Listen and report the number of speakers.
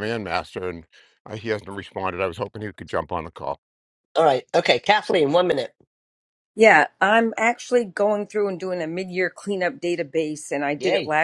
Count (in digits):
3